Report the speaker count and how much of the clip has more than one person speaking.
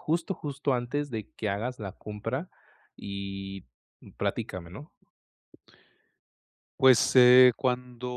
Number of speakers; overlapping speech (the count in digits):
2, no overlap